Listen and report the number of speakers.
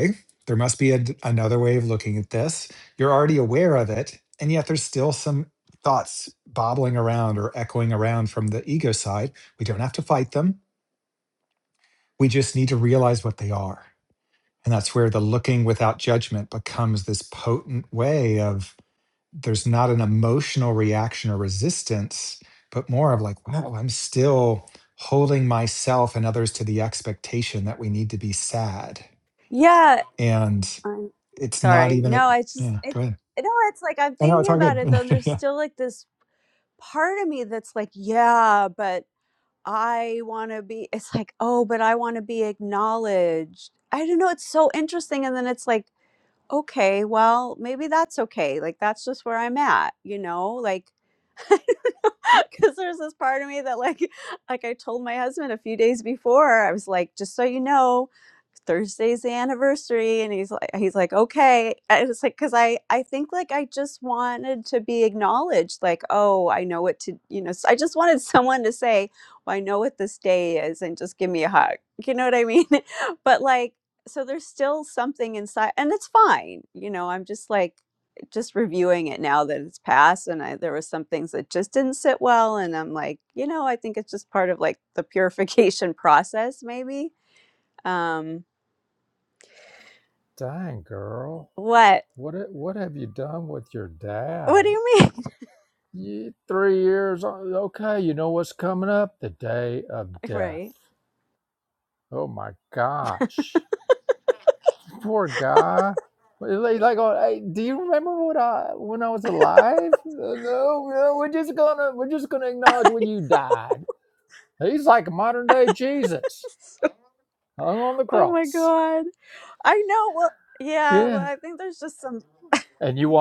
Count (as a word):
three